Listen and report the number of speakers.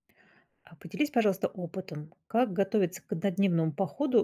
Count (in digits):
1